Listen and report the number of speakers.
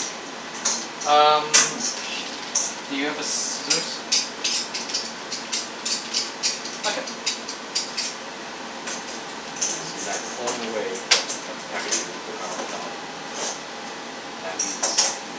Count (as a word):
two